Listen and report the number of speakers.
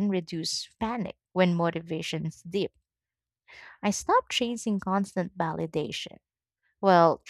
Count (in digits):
1